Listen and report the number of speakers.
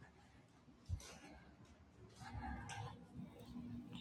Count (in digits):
0